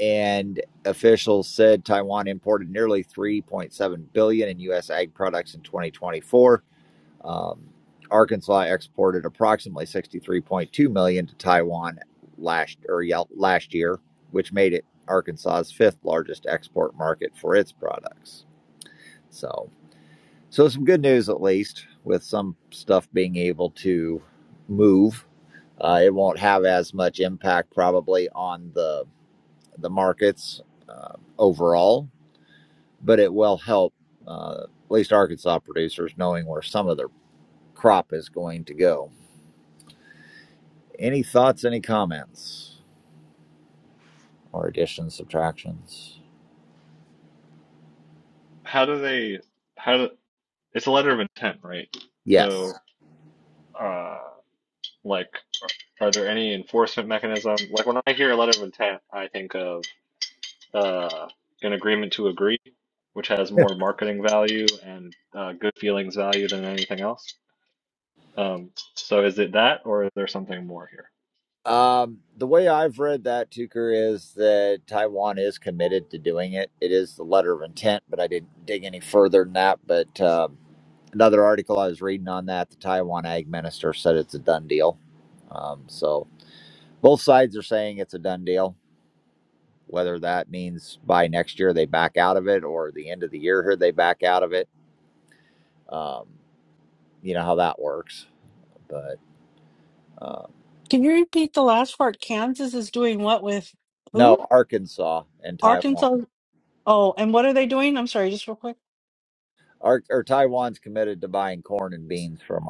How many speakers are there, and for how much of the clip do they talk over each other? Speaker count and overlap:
three, about 1%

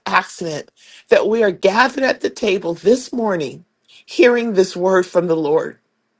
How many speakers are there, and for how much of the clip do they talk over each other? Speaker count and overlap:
one, no overlap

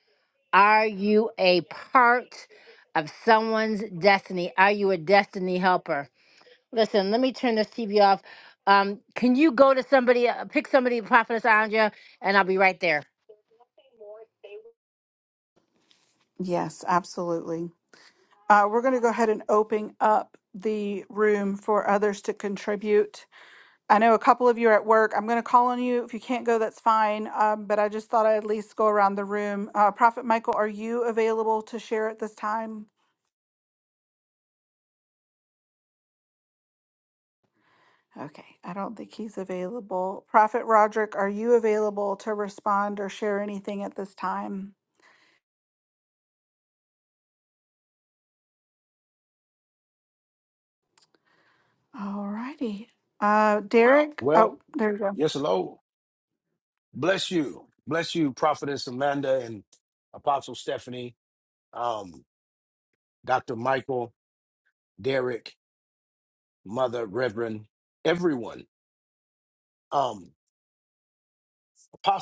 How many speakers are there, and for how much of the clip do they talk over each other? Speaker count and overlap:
three, under 1%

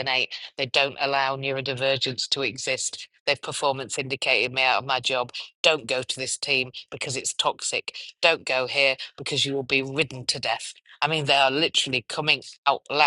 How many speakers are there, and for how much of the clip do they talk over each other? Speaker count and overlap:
one, no overlap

